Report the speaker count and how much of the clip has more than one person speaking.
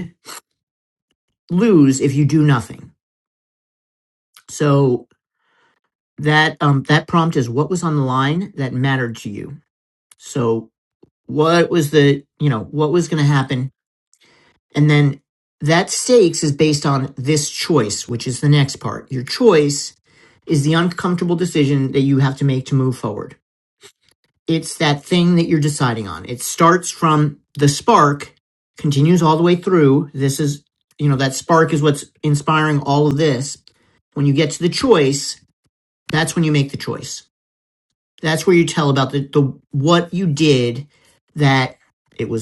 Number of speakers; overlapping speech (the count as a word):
one, no overlap